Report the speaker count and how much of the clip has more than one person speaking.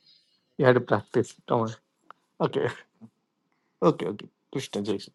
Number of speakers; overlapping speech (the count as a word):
one, no overlap